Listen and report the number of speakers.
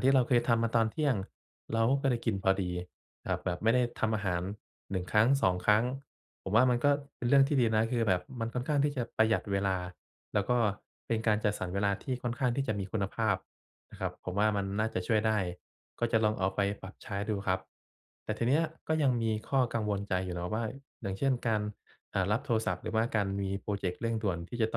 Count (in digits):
1